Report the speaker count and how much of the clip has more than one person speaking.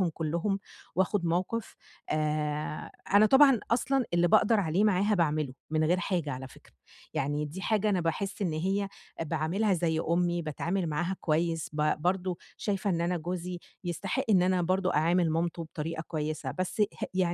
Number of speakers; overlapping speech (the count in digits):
1, no overlap